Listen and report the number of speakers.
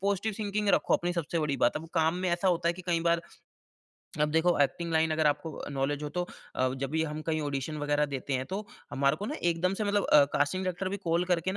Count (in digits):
1